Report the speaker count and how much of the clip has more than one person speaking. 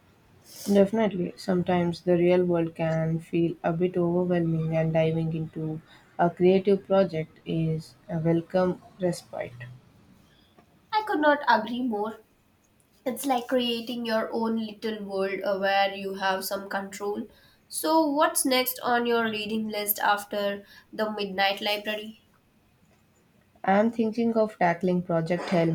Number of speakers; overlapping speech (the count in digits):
2, no overlap